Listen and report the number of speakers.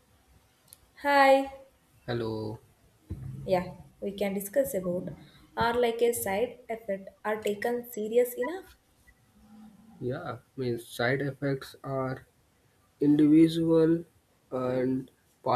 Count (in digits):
2